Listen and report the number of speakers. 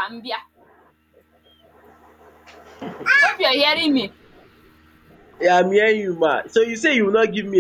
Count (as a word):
two